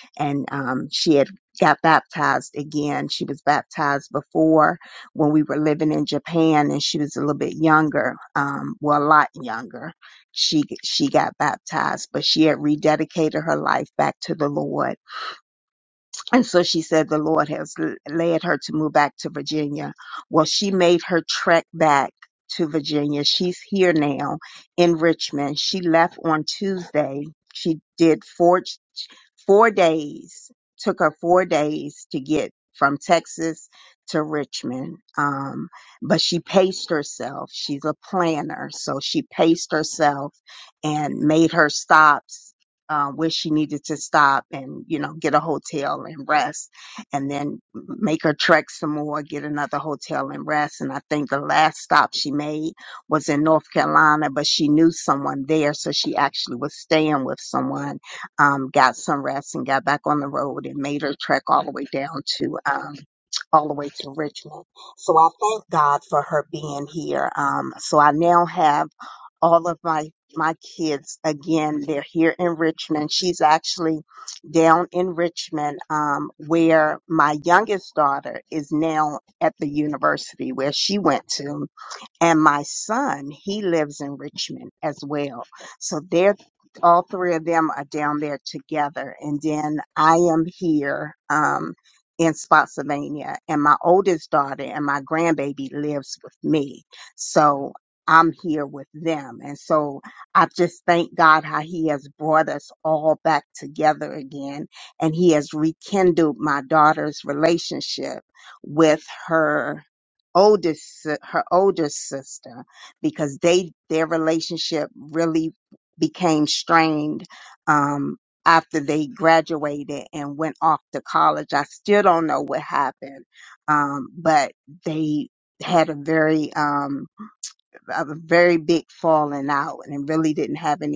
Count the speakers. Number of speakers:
one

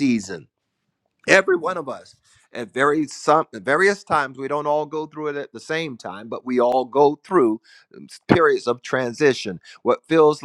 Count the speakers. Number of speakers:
one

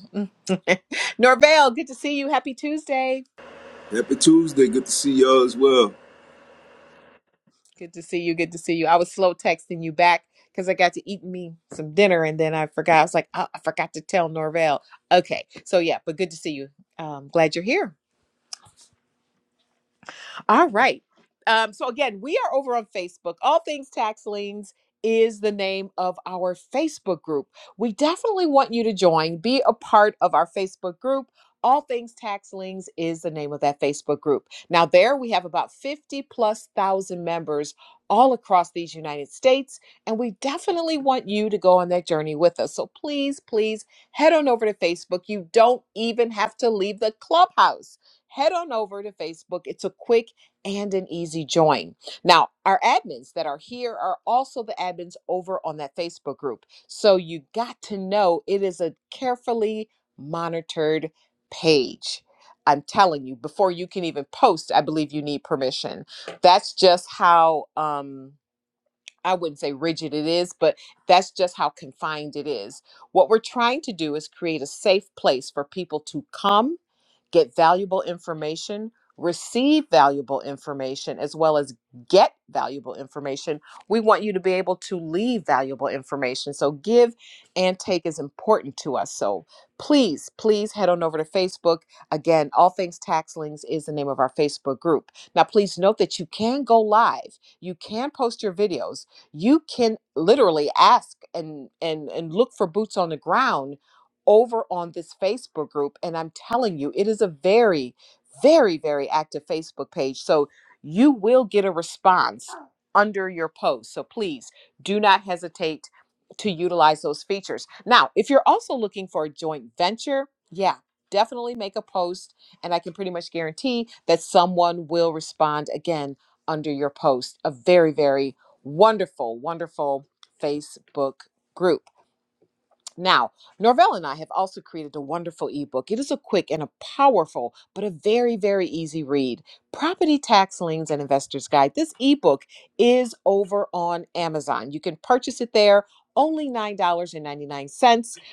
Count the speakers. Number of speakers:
two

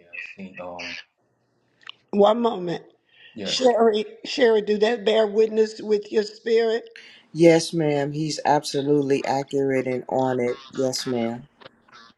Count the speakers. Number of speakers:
three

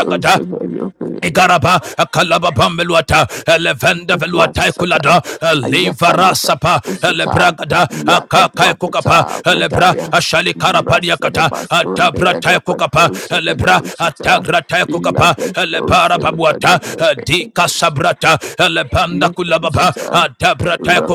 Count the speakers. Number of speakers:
two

